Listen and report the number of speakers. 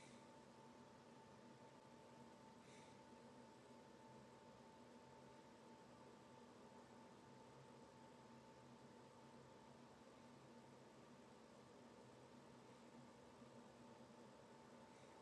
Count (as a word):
zero